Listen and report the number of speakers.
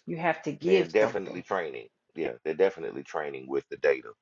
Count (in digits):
2